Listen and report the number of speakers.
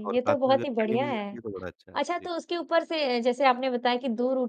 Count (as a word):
two